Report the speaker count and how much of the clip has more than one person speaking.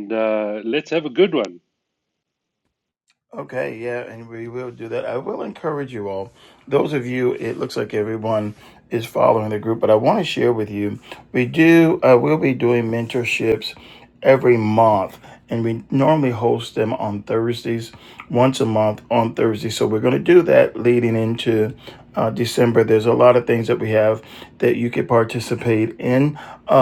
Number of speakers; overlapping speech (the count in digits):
2, no overlap